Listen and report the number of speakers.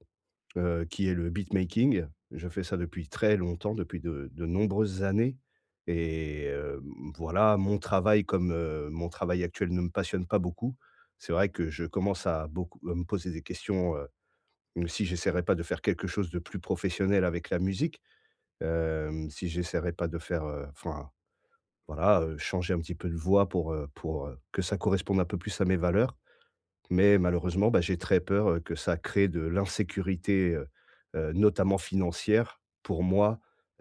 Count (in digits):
1